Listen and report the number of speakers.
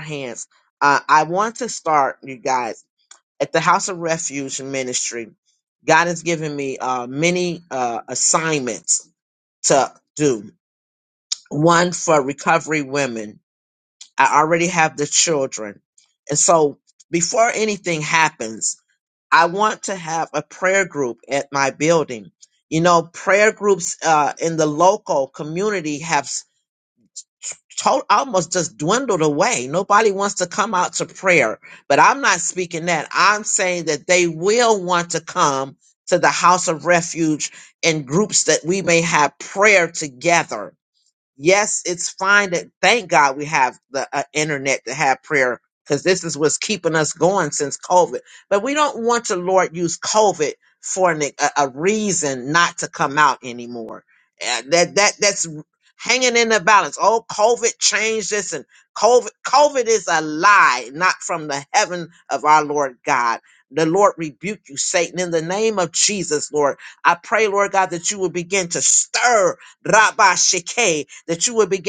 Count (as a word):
one